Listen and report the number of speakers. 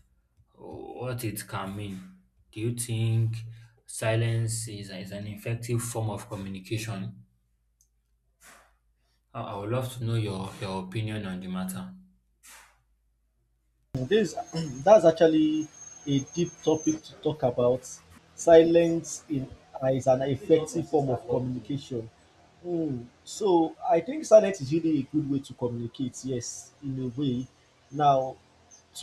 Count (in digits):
2